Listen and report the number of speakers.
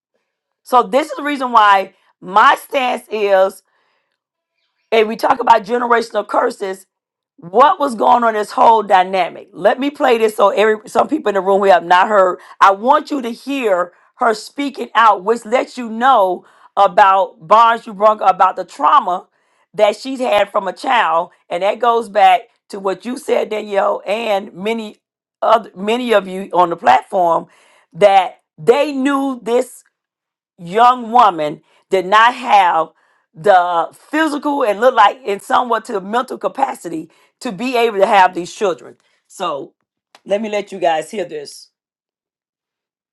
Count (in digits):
1